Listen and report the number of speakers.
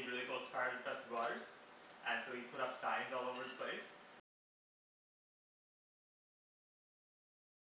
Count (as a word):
one